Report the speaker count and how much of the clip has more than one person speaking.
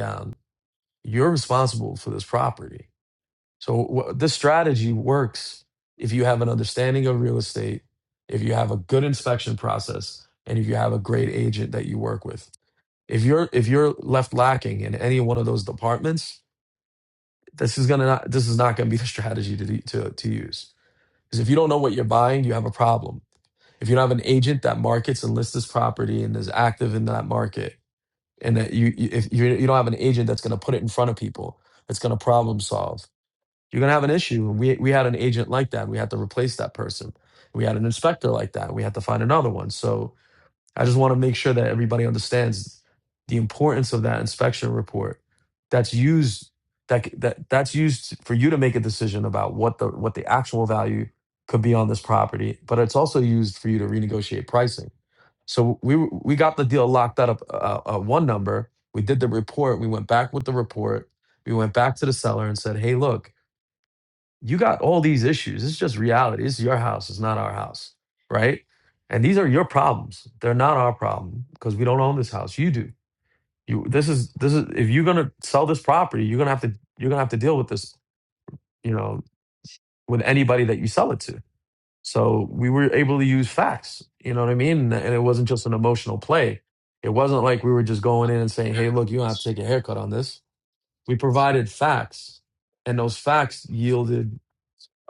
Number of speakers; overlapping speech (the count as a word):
one, no overlap